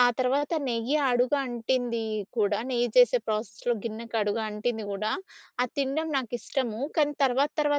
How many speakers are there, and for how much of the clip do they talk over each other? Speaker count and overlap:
1, no overlap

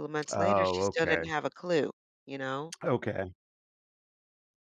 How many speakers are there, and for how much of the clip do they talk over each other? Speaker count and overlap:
2, about 21%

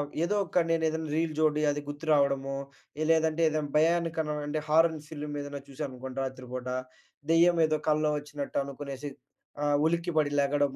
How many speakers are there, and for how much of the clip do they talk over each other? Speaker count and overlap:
1, no overlap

